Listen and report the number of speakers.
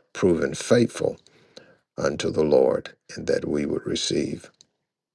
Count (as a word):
one